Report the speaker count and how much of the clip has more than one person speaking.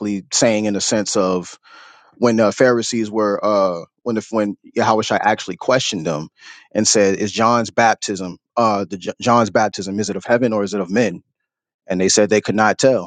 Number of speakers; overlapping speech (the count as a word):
one, no overlap